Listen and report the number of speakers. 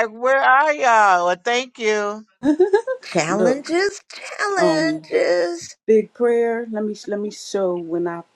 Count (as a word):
three